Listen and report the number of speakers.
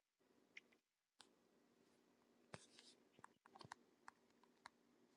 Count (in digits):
0